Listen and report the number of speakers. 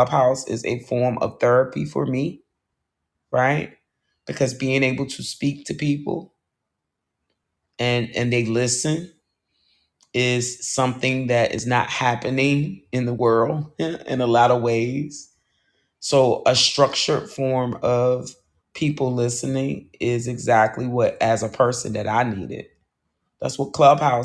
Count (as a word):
one